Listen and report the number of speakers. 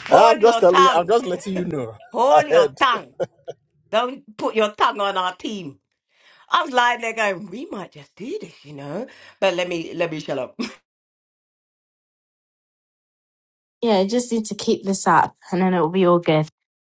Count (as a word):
three